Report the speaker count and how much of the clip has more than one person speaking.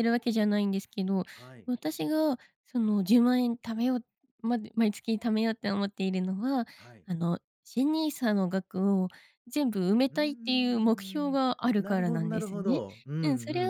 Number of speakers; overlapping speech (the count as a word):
two, about 13%